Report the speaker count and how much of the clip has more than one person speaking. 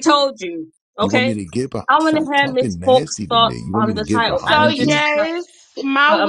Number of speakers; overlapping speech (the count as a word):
three, about 63%